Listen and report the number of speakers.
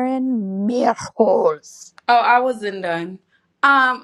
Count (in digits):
2